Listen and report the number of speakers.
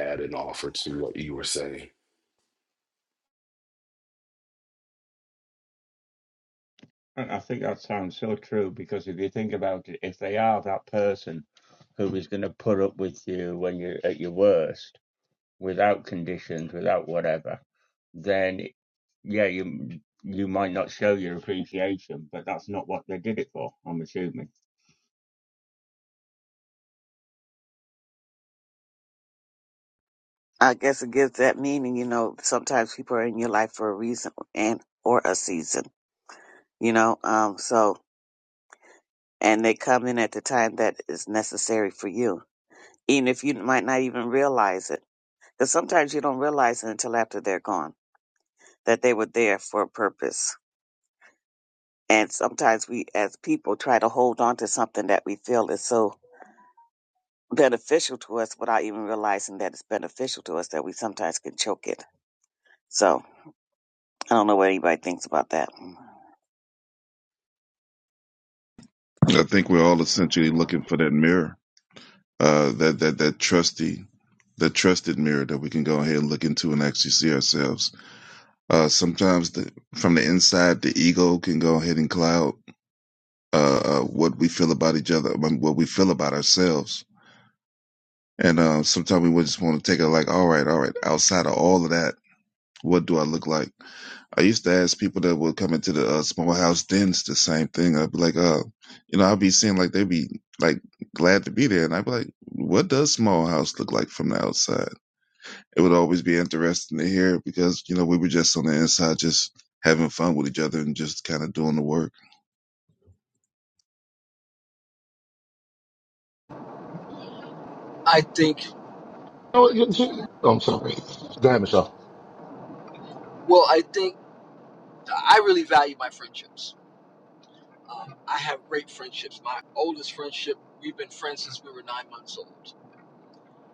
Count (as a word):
six